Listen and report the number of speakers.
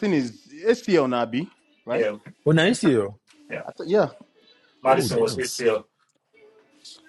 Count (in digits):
3